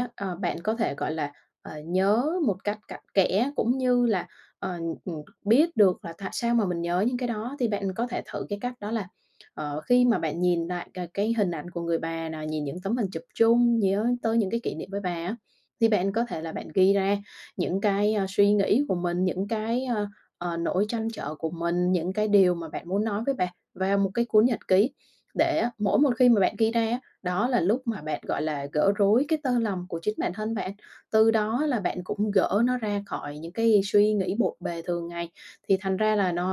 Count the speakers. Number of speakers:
1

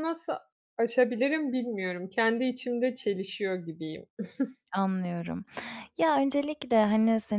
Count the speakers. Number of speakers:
2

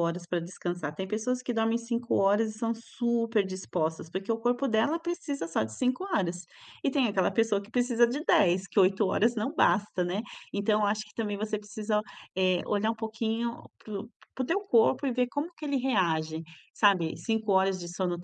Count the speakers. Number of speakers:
1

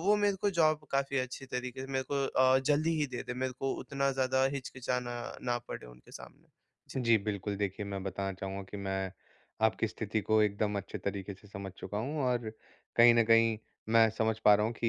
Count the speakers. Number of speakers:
2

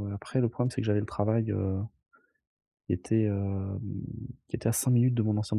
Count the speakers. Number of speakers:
1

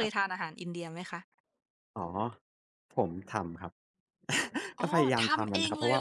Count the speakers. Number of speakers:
2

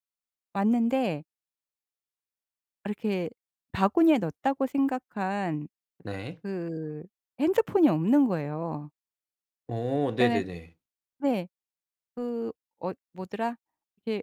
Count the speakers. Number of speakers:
2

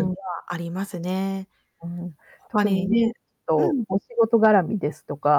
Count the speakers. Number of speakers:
2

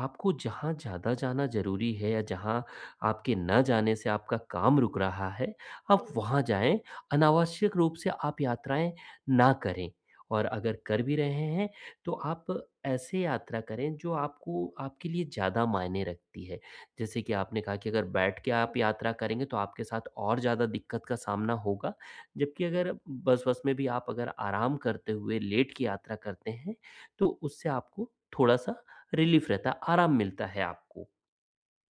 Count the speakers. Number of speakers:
1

